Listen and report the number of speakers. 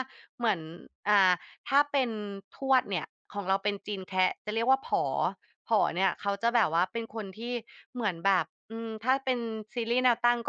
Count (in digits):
1